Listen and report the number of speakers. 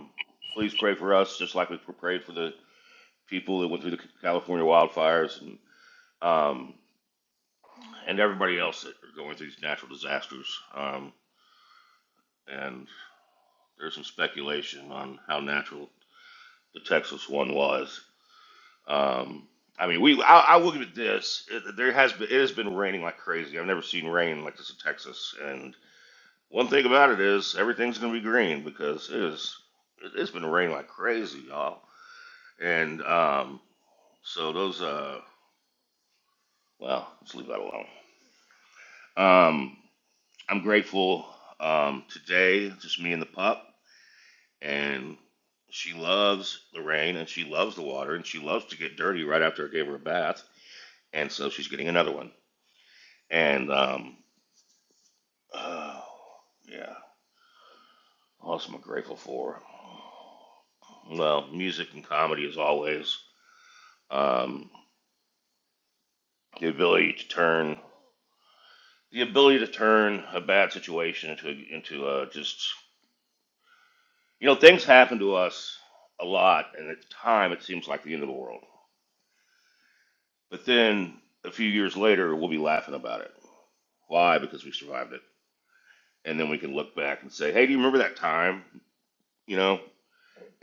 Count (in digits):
1